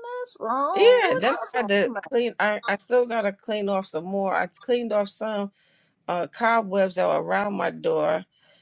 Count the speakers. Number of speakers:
2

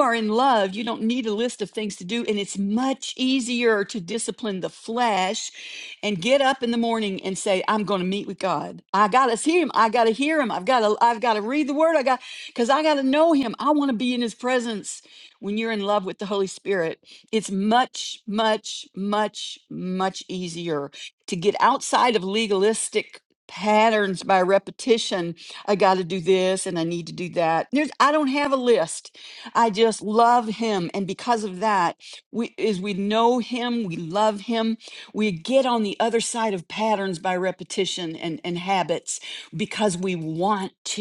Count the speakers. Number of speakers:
1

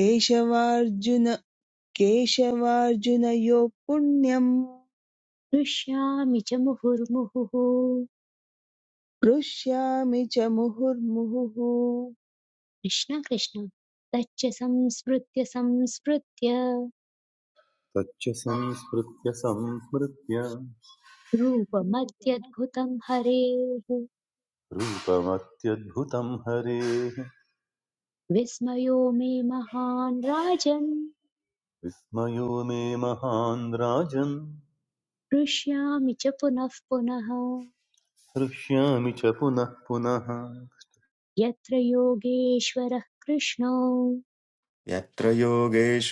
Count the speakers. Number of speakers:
4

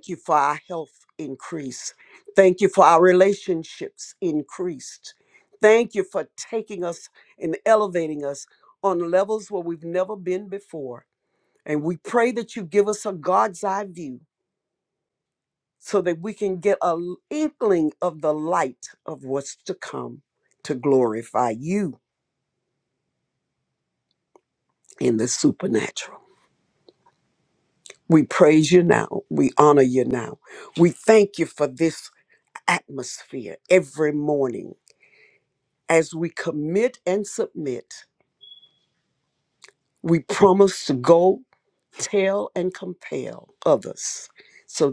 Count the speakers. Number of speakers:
1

